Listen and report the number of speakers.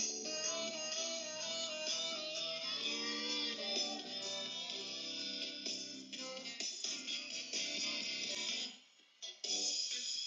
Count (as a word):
zero